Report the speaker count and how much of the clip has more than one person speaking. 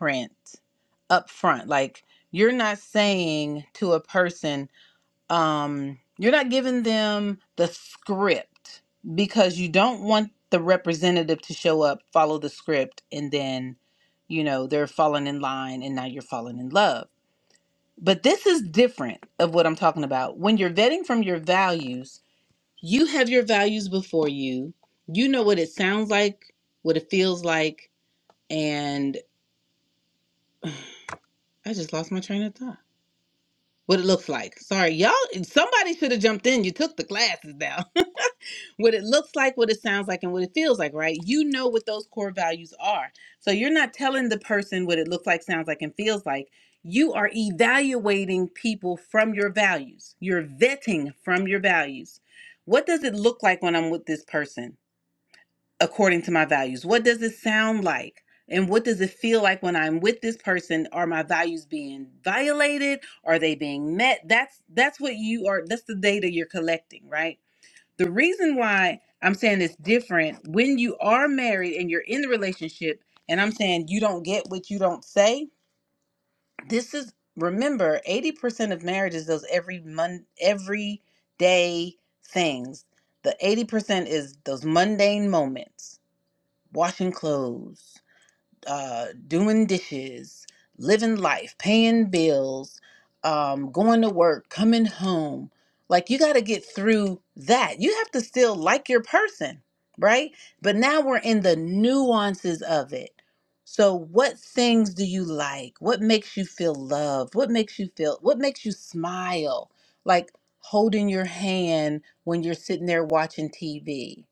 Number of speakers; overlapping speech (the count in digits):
1, no overlap